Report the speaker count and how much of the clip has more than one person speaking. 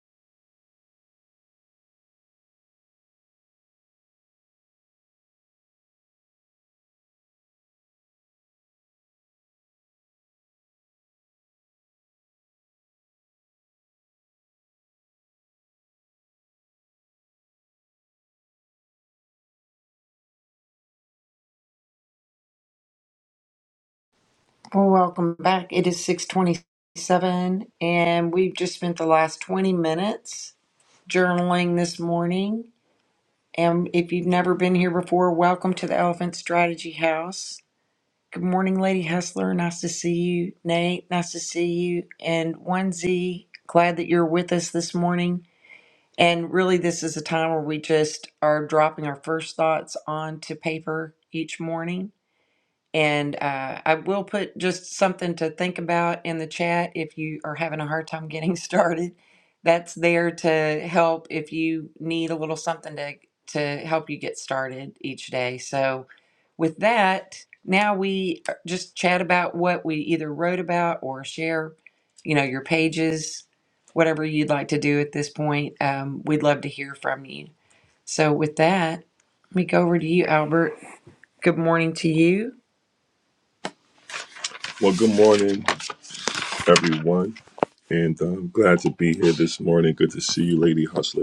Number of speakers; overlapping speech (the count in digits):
2, no overlap